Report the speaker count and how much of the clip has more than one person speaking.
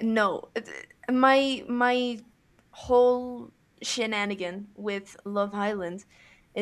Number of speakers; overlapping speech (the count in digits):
1, no overlap